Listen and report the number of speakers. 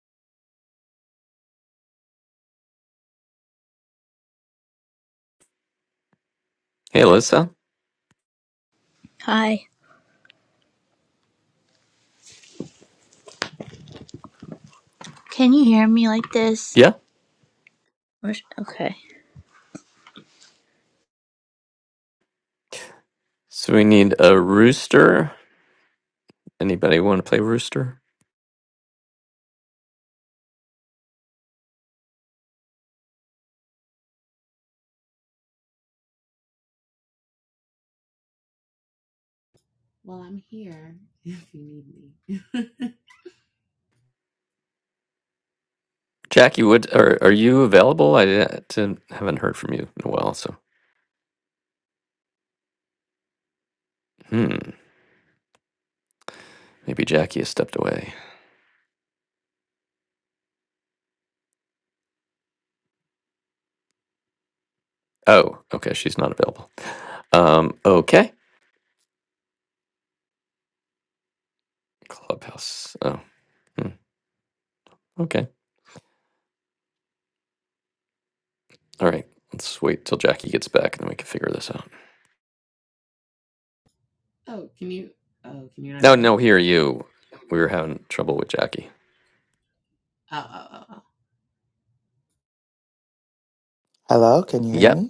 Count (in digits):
4